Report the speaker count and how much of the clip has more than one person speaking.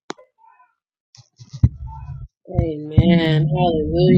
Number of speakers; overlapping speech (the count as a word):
one, no overlap